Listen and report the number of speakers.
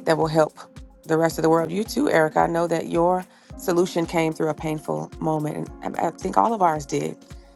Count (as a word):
one